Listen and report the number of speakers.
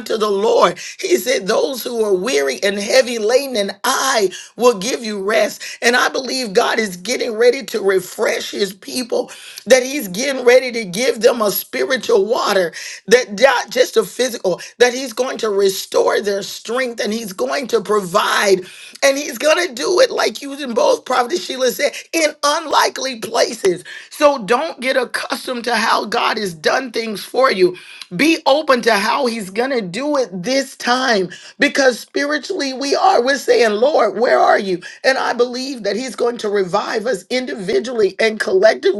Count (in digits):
1